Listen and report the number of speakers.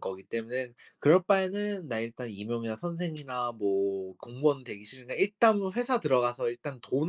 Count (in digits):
1